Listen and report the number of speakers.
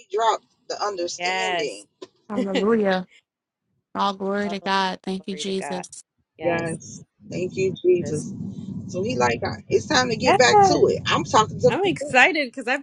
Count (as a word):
three